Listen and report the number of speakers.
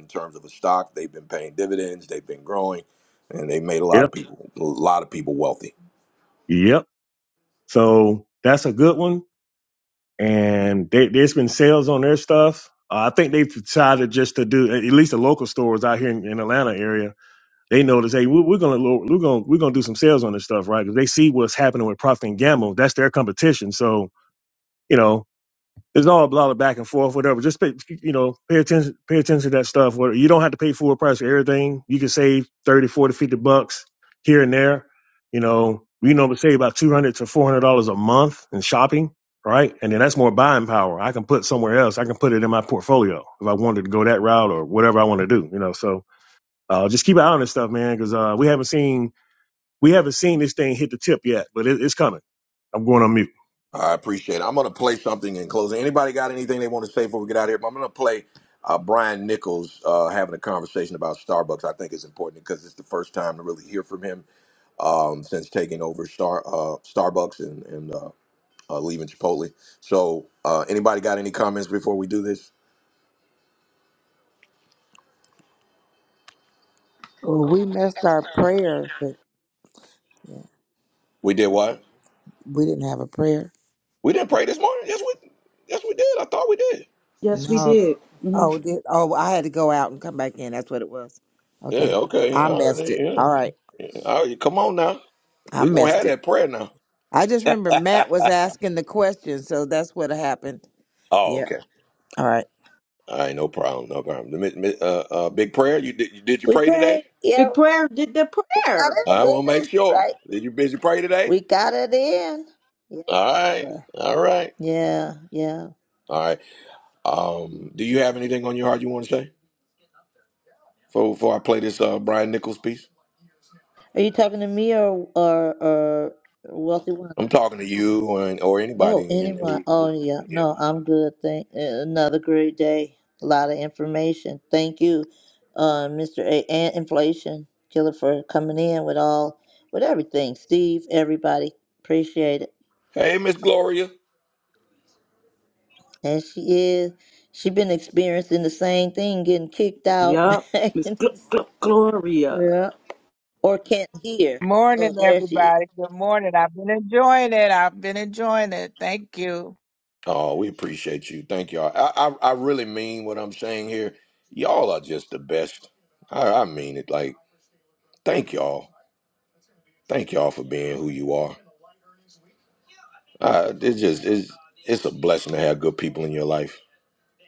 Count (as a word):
six